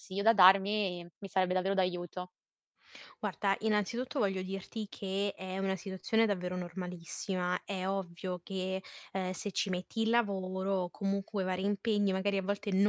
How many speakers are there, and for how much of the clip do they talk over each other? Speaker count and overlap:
2, no overlap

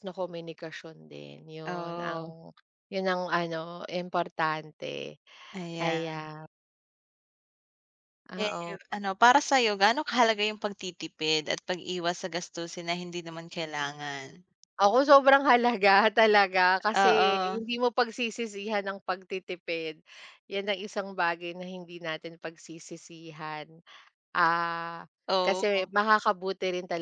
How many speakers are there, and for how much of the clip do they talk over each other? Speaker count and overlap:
2, about 8%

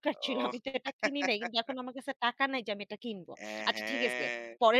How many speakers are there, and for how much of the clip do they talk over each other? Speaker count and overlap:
2, about 27%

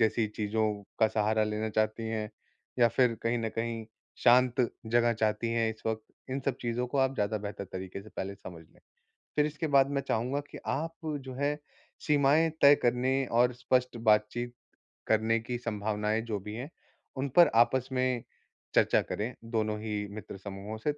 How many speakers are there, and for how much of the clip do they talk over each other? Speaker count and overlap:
1, no overlap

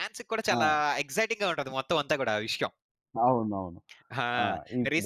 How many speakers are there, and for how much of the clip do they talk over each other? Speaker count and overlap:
2, about 8%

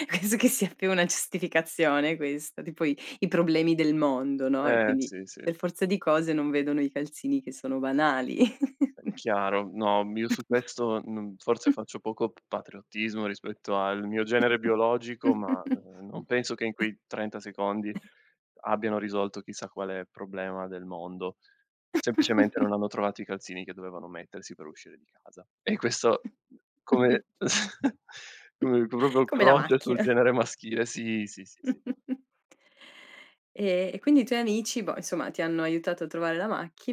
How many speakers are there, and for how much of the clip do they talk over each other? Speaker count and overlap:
2, about 3%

